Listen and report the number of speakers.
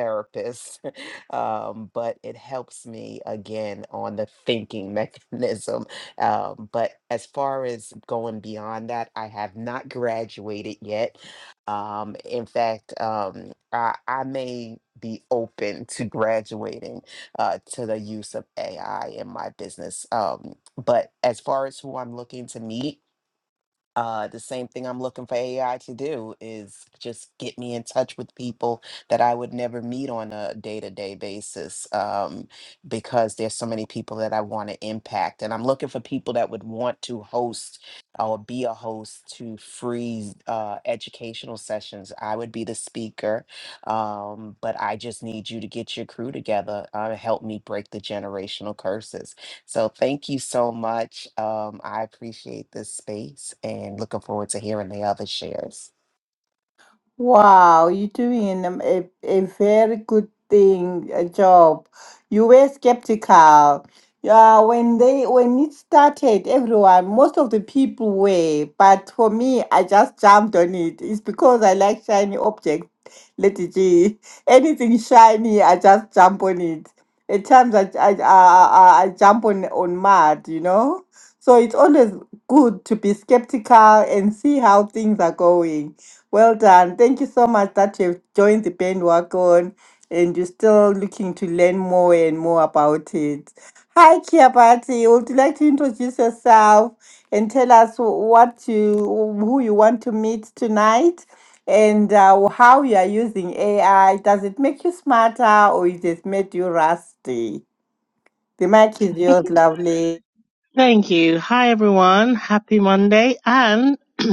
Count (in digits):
3